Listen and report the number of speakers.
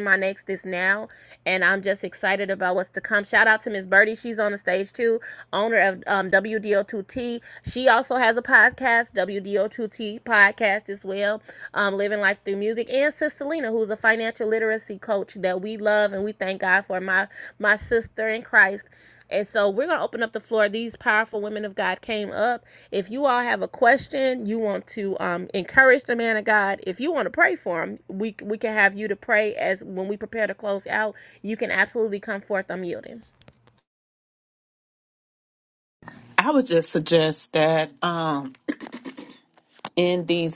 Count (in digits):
2